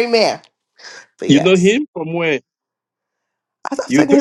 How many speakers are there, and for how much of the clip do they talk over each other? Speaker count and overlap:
2, about 14%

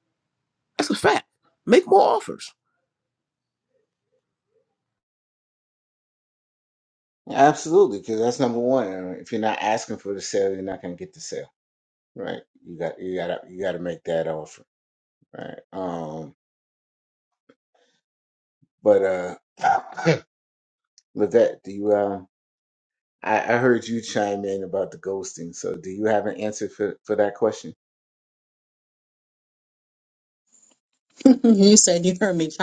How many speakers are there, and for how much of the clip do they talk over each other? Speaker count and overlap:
3, no overlap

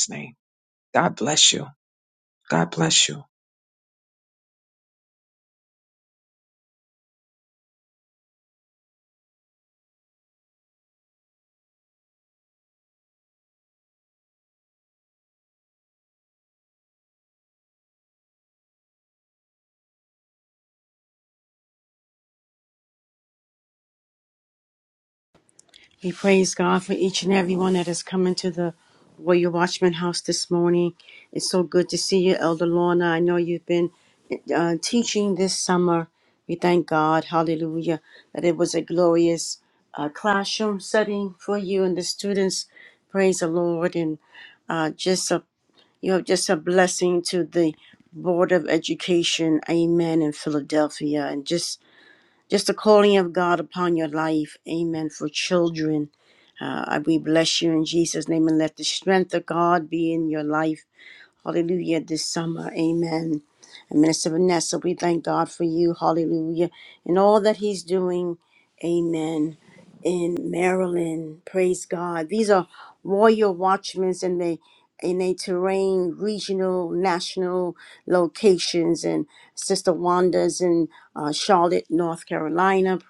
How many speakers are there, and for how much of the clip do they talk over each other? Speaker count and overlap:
2, no overlap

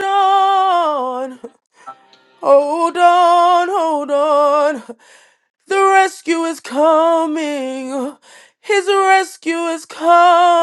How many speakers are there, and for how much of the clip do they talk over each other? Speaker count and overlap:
1, no overlap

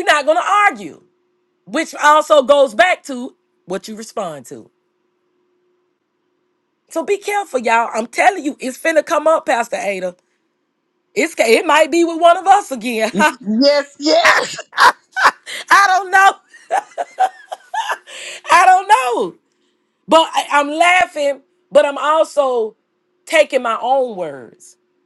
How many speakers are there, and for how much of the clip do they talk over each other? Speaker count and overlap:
2, about 1%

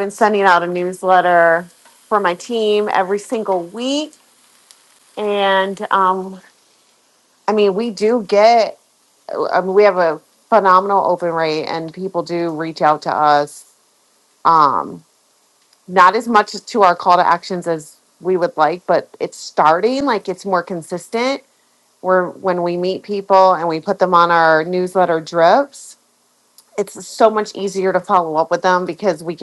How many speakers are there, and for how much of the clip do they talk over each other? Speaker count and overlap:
1, no overlap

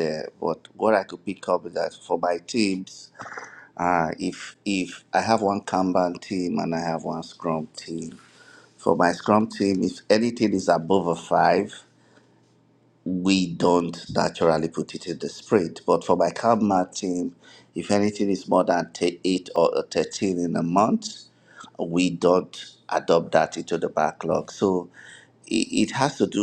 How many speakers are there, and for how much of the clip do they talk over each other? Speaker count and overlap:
1, no overlap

